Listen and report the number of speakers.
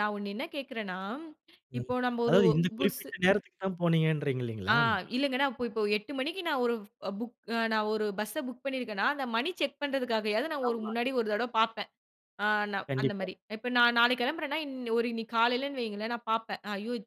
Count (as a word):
two